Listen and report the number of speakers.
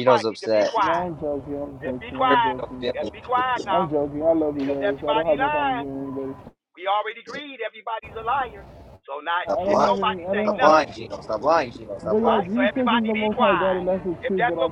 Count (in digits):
3